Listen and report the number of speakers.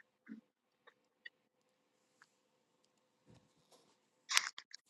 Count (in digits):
0